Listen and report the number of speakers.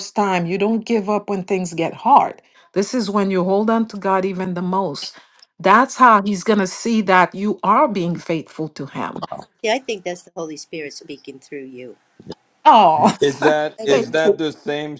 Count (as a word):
three